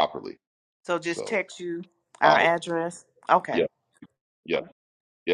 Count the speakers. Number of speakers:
2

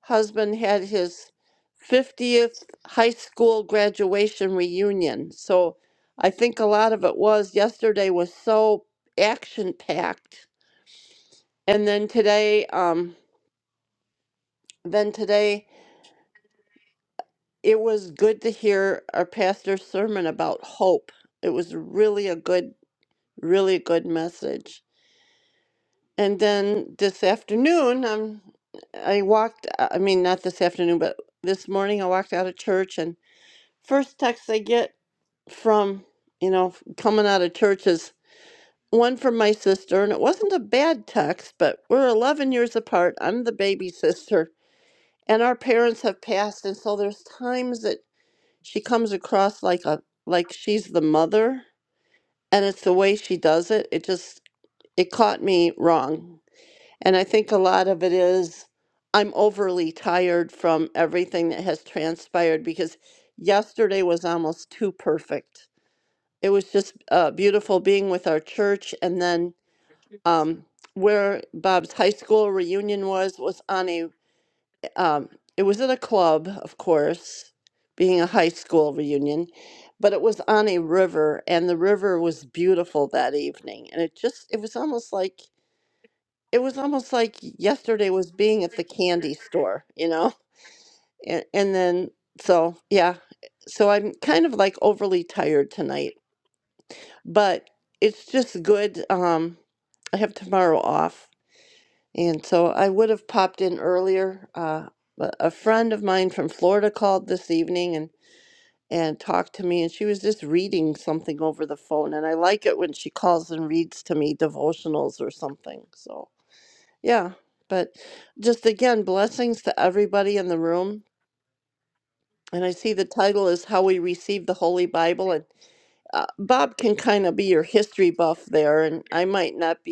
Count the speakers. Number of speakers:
1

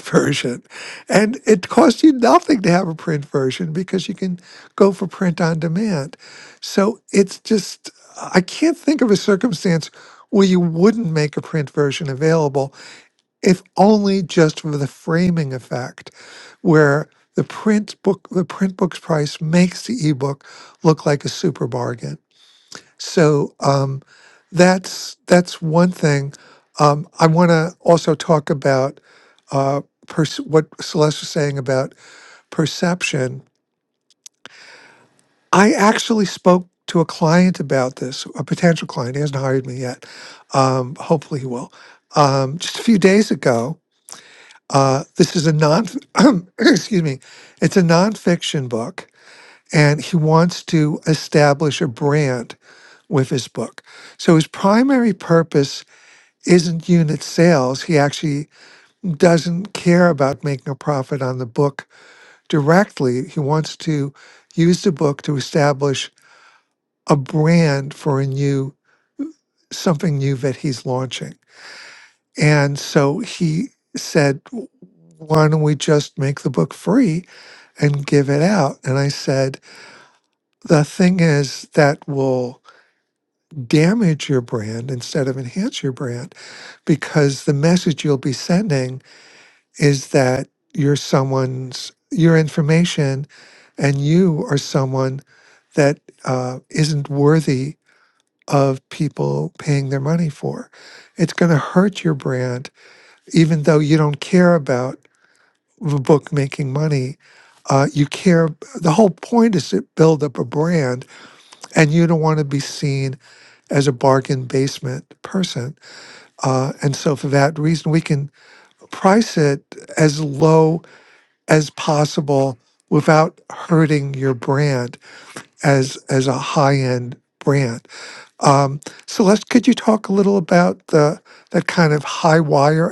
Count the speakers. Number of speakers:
1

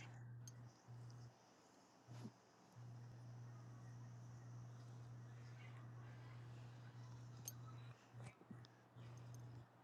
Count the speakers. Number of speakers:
0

